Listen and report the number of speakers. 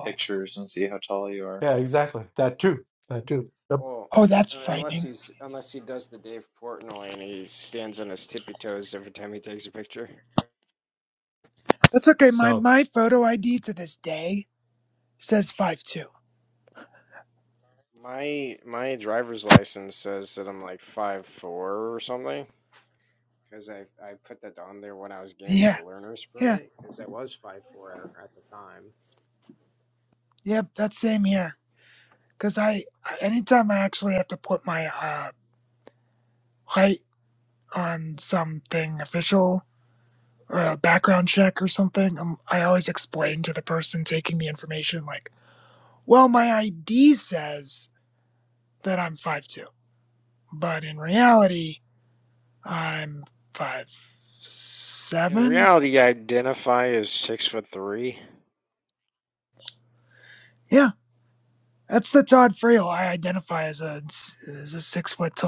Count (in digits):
4